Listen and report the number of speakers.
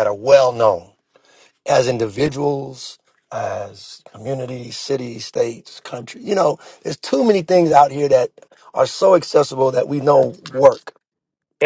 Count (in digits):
1